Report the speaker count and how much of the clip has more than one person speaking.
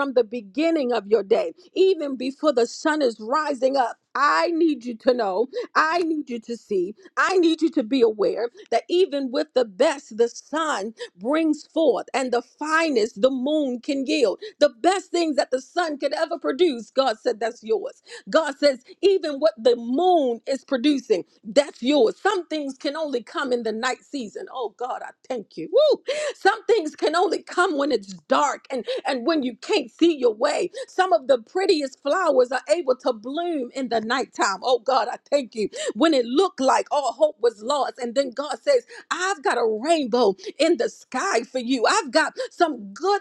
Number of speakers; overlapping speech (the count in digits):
1, no overlap